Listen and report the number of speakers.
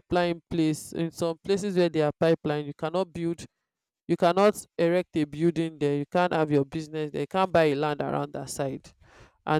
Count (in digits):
1